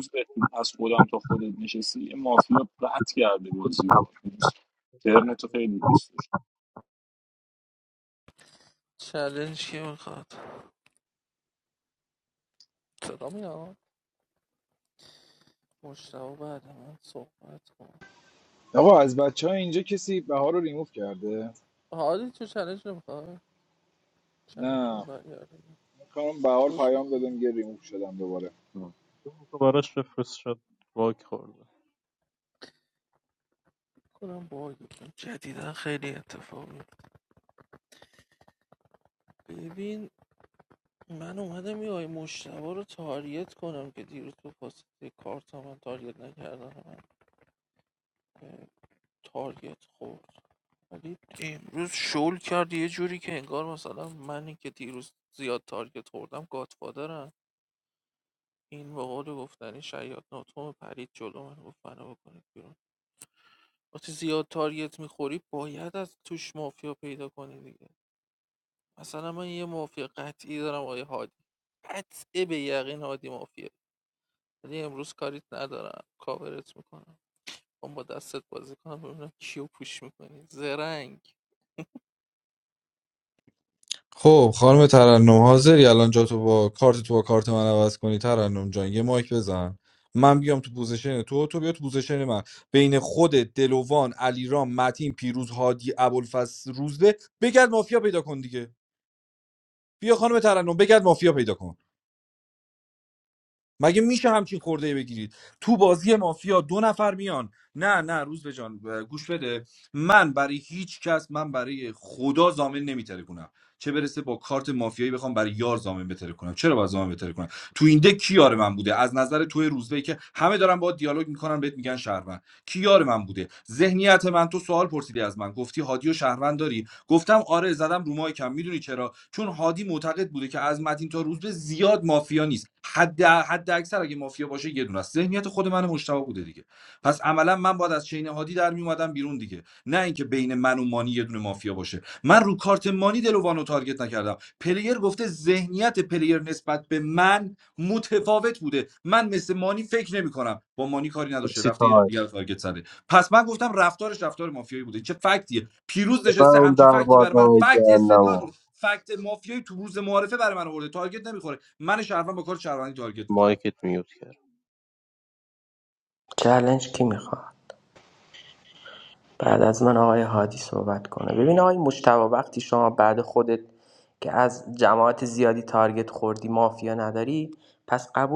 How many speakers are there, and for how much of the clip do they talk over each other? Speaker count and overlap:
six, about 2%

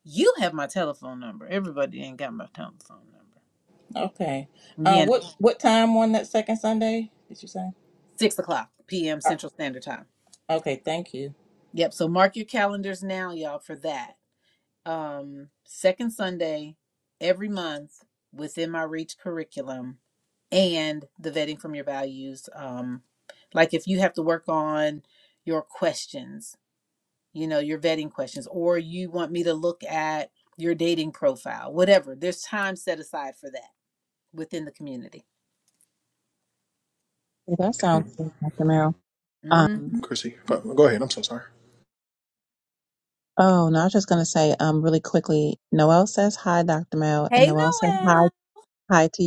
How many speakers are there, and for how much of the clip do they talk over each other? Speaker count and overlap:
four, about 3%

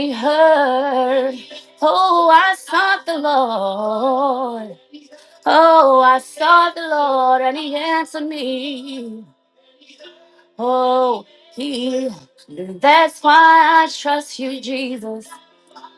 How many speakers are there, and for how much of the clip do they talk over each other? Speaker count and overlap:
one, no overlap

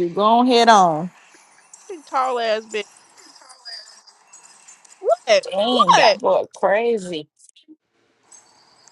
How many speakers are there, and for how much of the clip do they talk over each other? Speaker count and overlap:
three, about 8%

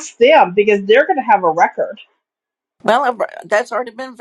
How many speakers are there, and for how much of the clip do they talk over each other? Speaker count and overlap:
two, no overlap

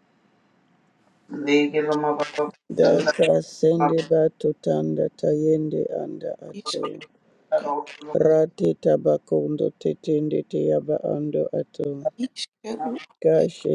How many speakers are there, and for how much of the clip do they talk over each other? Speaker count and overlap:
three, about 6%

